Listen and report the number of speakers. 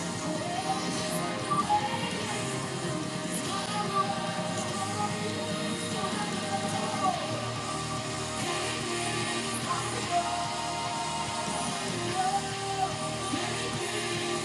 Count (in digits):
0